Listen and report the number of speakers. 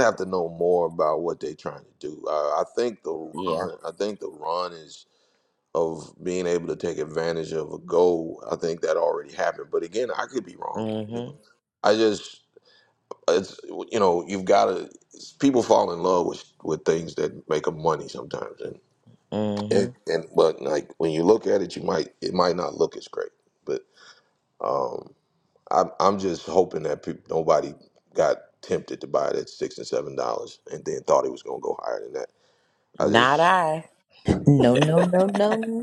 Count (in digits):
3